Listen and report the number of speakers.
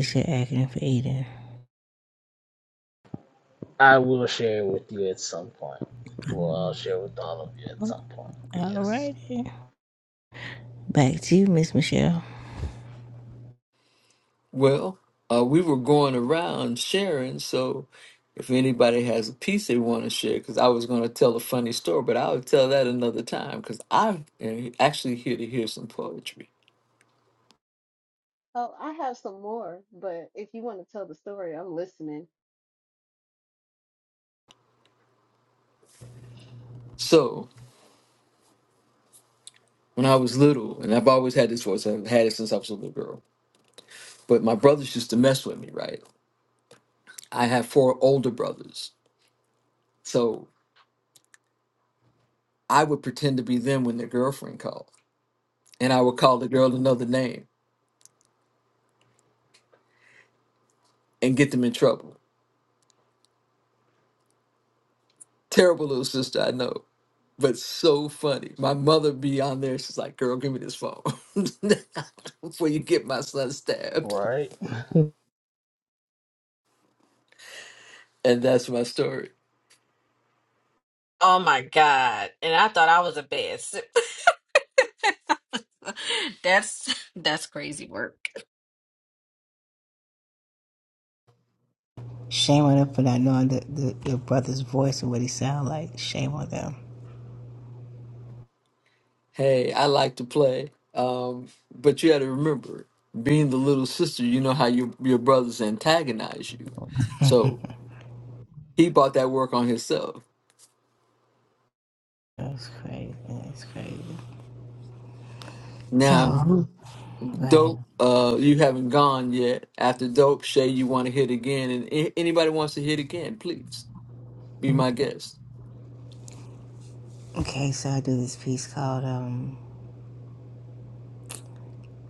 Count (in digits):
5